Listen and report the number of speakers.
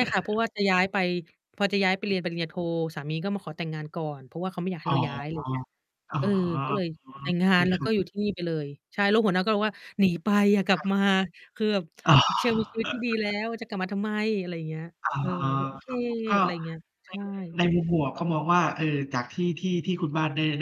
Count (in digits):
2